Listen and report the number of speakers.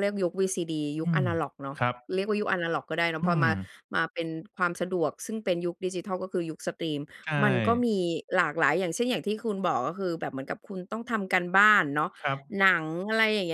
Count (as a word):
two